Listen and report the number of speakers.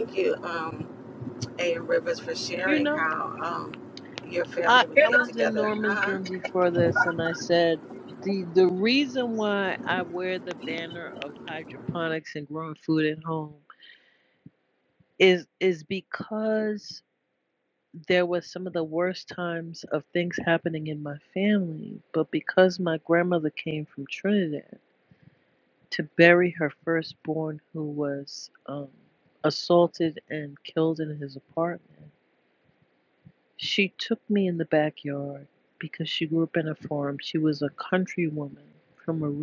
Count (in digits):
2